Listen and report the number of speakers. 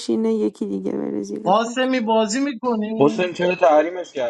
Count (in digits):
3